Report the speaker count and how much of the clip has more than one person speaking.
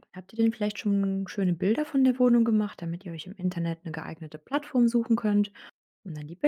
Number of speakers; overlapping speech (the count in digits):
1, no overlap